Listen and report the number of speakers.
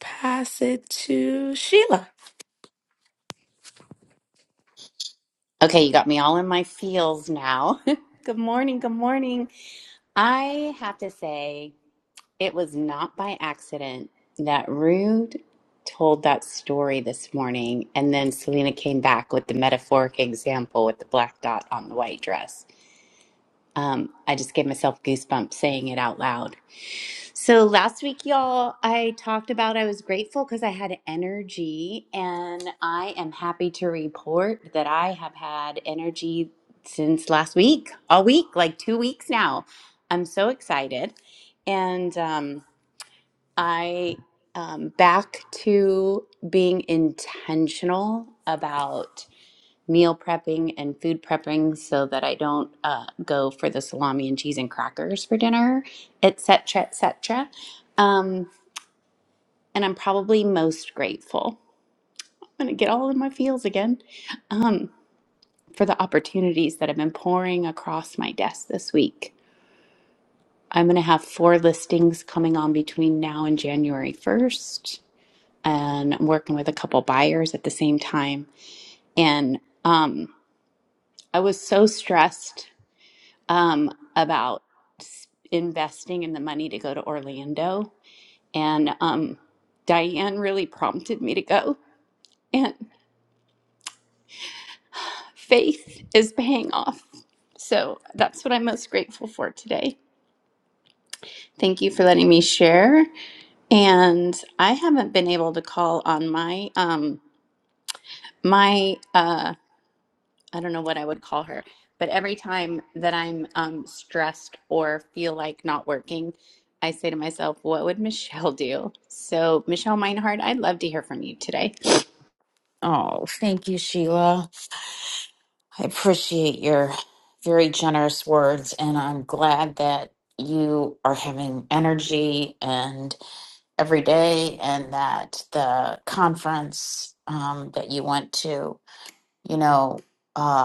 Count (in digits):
3